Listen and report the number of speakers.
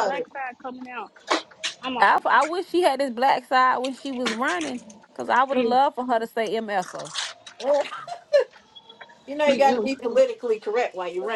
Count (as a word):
three